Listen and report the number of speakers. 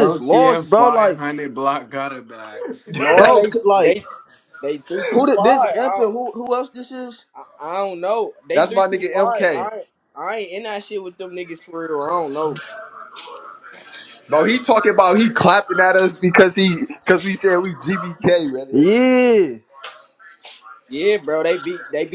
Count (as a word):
four